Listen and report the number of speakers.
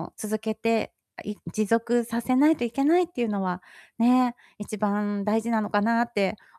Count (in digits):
1